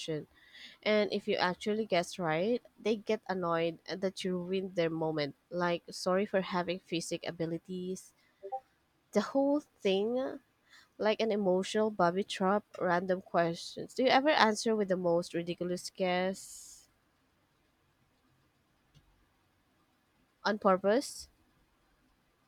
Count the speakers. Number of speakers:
1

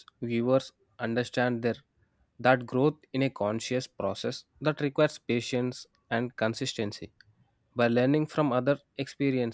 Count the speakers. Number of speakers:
1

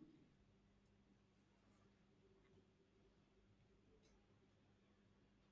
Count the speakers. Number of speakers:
0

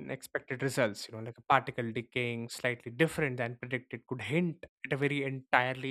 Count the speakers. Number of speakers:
1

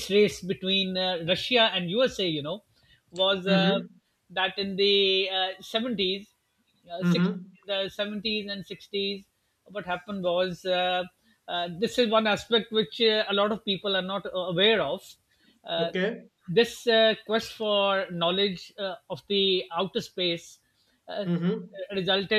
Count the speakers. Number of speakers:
2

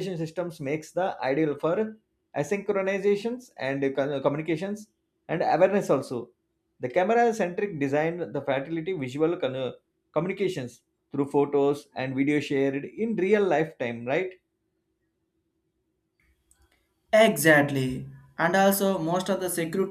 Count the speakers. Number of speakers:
2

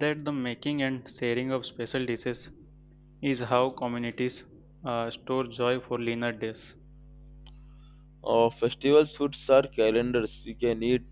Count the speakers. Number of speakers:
2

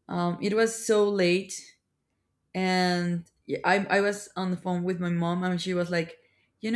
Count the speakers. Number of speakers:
1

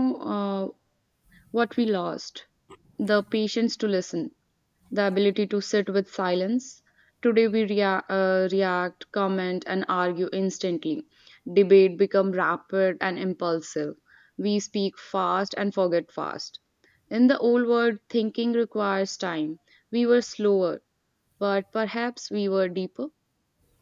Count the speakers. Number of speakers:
1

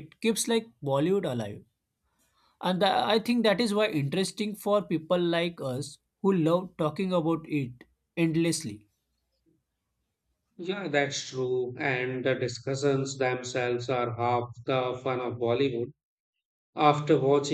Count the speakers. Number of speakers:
2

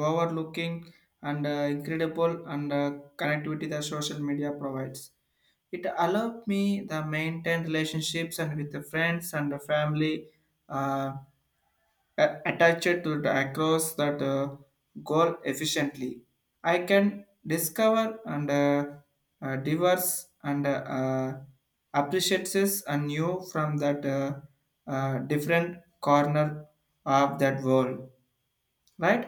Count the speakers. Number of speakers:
1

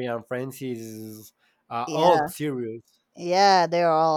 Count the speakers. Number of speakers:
2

